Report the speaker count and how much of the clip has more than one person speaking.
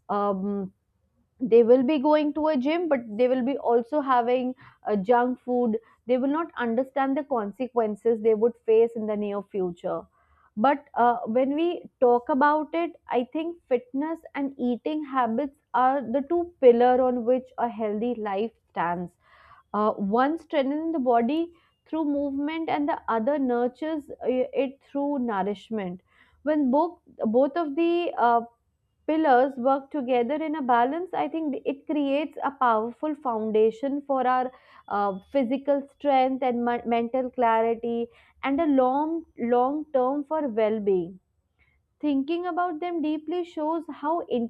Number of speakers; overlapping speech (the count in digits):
1, no overlap